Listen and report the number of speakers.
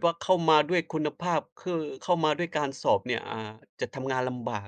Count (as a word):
one